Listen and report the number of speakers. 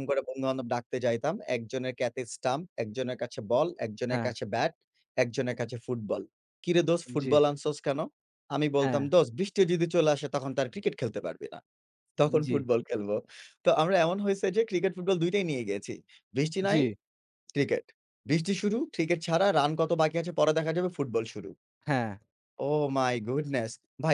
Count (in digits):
2